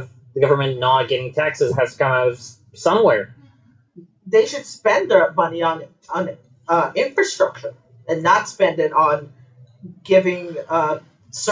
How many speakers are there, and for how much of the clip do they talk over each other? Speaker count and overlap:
two, no overlap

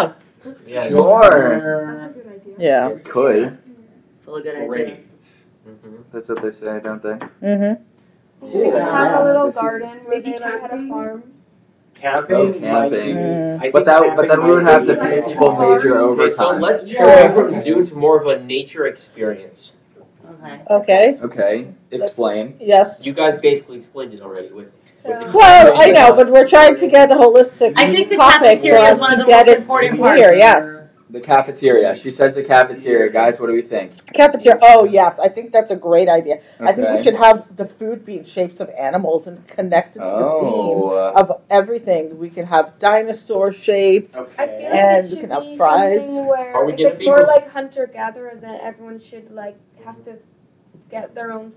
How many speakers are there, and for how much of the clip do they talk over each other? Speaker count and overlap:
seven, about 41%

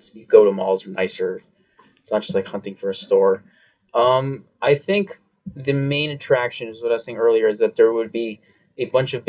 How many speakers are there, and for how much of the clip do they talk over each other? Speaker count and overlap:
one, no overlap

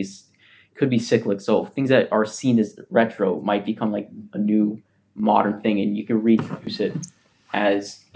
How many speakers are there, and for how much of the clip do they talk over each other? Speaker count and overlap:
one, no overlap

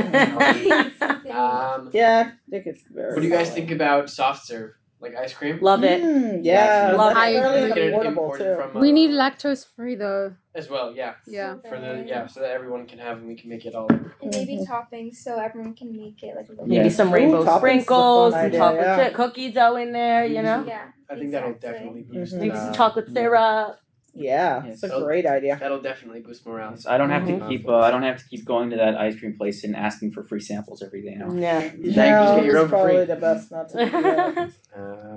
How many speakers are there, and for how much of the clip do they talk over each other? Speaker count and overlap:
six, about 44%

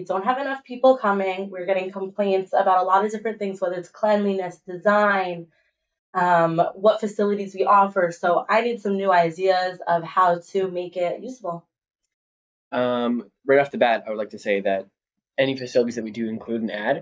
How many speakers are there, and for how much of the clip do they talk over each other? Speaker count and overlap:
two, no overlap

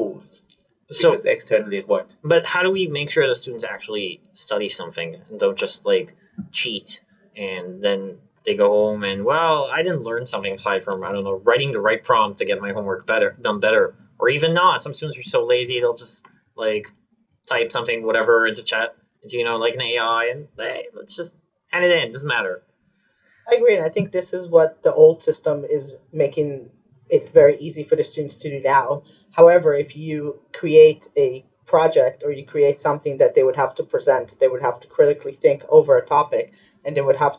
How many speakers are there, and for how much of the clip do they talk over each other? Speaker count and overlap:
three, under 1%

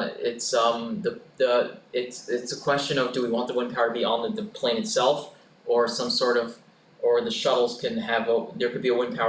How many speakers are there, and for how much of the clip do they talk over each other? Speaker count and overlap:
one, no overlap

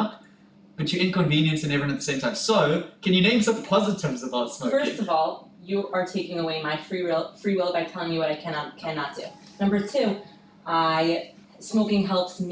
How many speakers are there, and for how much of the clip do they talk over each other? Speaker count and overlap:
two, about 5%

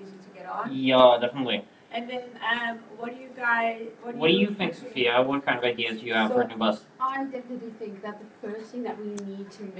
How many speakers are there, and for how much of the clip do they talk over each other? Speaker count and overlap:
three, about 14%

